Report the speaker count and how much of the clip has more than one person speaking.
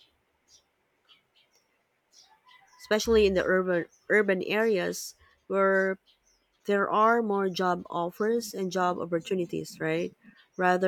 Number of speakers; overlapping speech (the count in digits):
1, no overlap